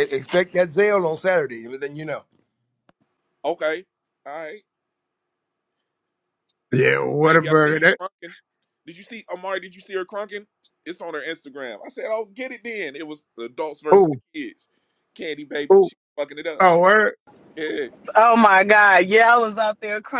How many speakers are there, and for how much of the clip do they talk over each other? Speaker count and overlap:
four, about 6%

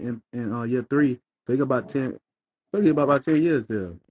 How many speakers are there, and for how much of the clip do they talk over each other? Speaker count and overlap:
one, no overlap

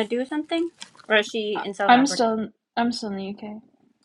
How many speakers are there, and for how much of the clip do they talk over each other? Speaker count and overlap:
two, about 16%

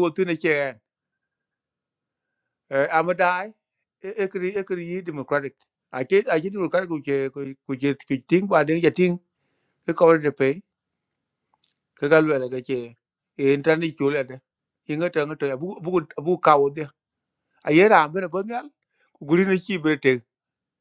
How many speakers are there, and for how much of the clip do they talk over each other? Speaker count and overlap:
one, no overlap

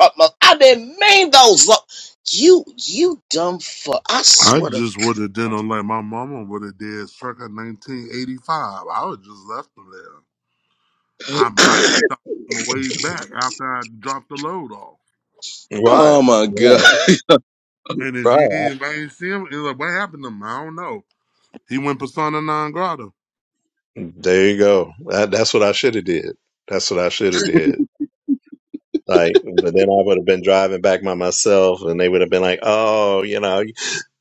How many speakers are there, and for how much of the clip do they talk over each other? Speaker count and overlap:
three, about 6%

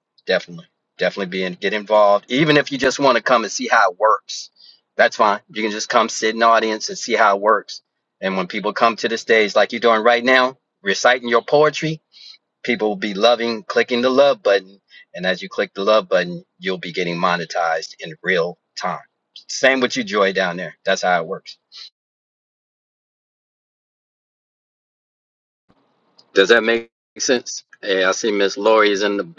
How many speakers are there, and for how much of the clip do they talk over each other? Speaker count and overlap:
one, no overlap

